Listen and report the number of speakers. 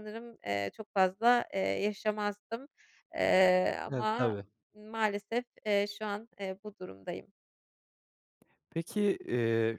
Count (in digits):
2